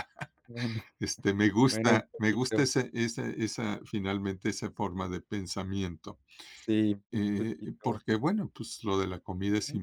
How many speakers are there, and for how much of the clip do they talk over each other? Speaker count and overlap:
two, about 19%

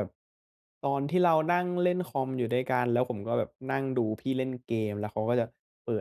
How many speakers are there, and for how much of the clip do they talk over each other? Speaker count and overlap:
one, no overlap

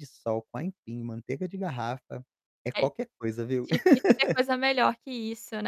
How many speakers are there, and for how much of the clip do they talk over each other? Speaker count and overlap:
two, about 3%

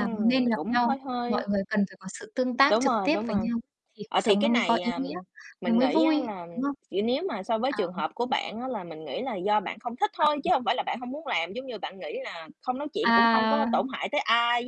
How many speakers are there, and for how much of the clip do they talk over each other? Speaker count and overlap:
two, about 35%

